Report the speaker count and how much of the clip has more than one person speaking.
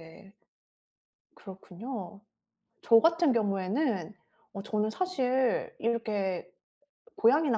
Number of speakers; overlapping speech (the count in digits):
1, no overlap